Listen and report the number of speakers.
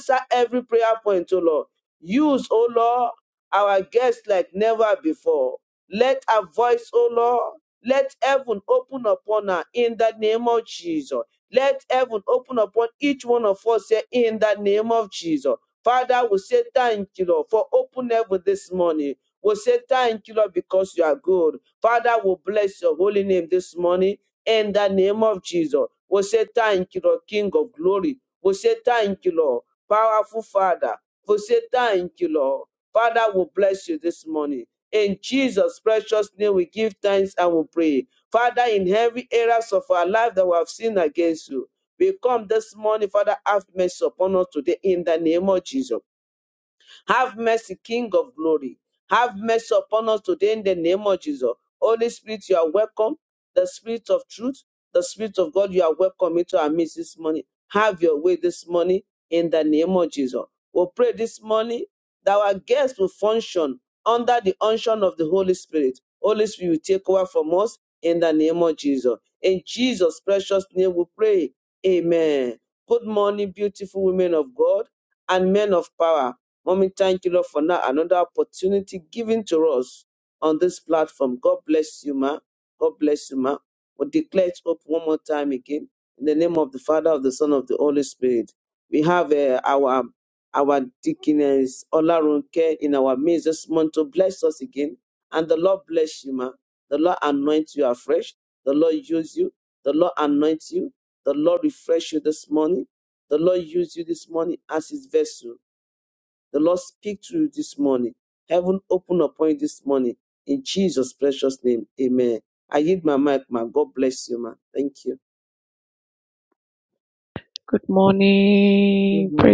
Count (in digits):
2